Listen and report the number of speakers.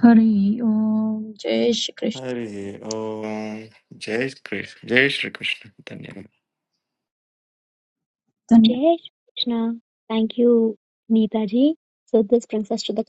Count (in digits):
3